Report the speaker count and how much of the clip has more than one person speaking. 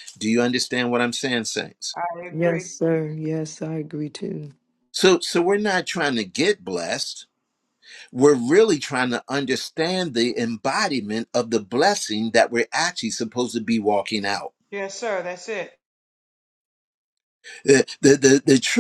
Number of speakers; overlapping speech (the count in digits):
3, about 2%